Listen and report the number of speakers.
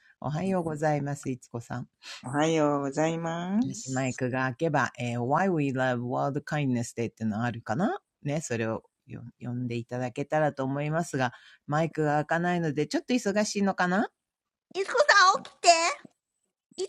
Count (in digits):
3